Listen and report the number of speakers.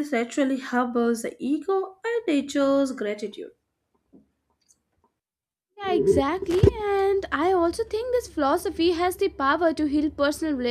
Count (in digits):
2